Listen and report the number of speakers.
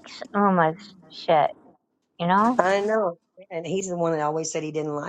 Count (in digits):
2